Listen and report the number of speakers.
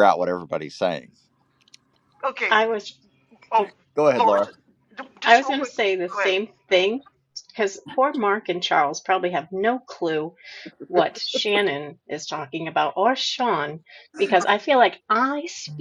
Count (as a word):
three